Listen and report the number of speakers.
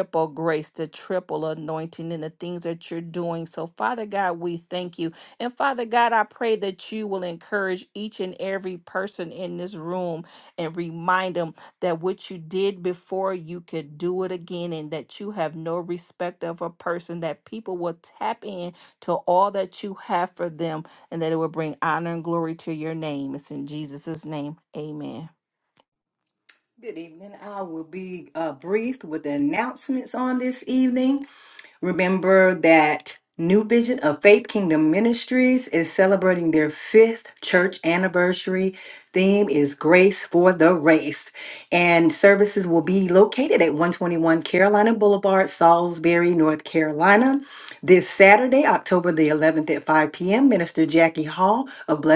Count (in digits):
2